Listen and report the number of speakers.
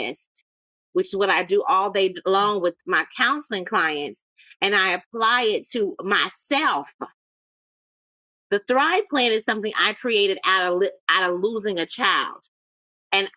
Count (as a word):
one